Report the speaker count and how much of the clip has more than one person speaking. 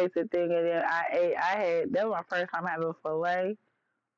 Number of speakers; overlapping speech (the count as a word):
one, no overlap